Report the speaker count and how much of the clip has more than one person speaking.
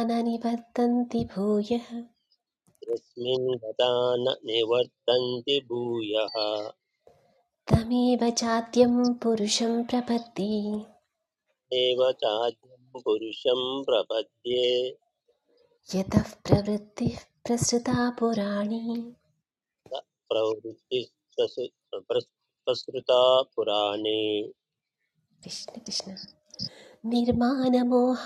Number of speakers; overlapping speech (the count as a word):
two, no overlap